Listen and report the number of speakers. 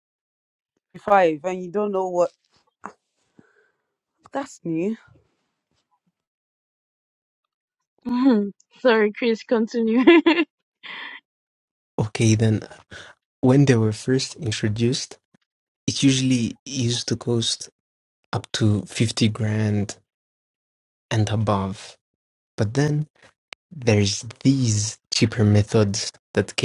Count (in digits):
3